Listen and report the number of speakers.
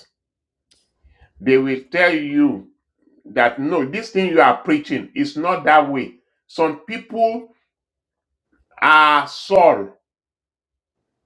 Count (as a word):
one